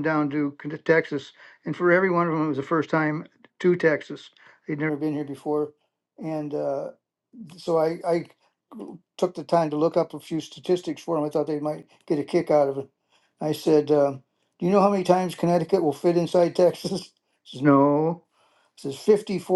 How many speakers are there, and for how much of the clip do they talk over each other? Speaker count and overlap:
1, no overlap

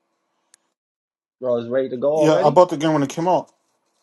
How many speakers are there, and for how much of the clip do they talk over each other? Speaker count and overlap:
2, about 9%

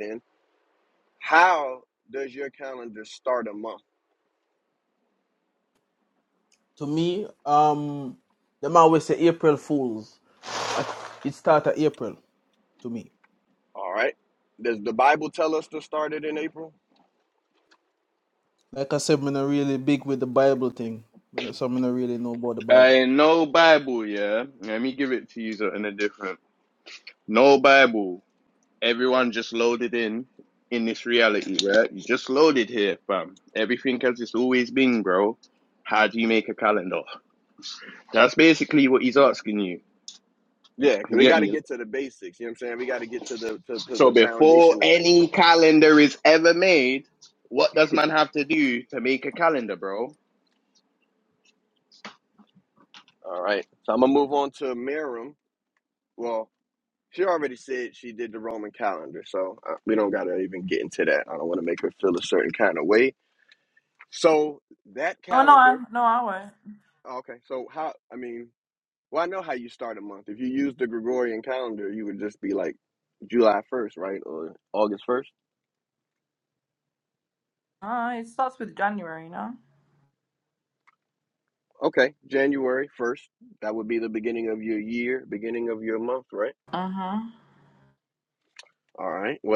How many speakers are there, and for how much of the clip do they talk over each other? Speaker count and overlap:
4, about 3%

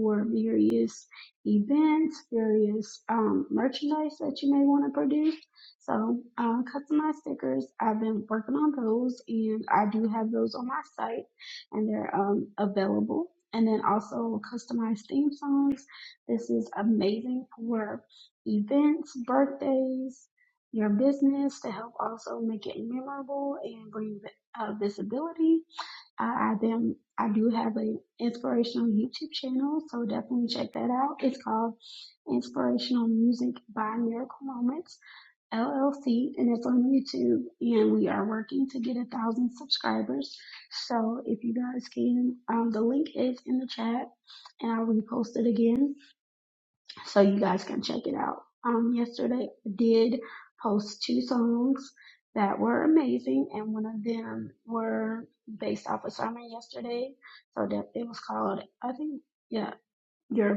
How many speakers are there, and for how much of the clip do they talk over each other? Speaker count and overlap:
1, no overlap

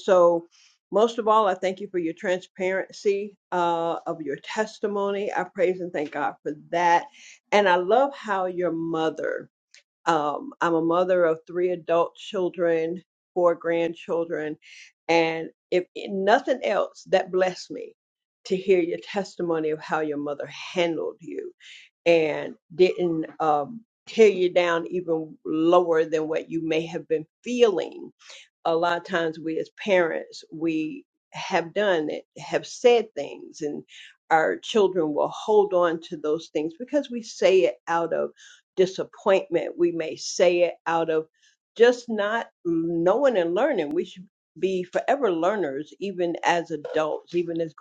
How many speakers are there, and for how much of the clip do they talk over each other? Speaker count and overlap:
1, no overlap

